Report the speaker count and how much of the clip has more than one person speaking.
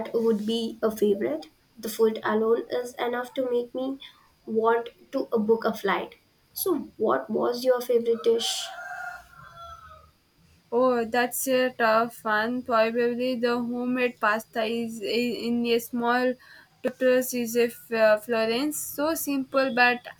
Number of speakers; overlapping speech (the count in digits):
2, no overlap